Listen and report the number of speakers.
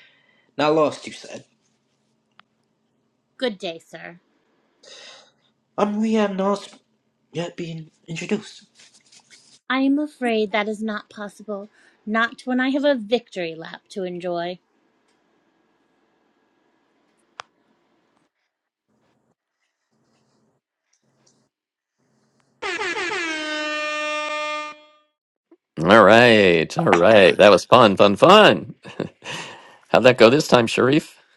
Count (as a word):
three